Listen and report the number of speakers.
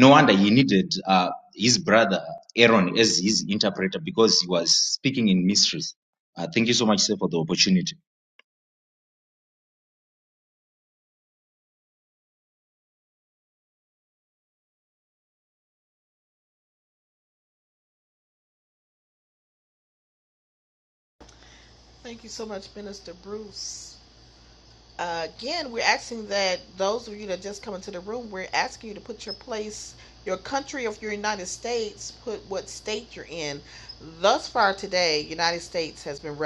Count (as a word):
two